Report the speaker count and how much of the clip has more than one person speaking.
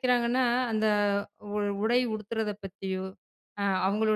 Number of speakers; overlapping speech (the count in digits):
1, no overlap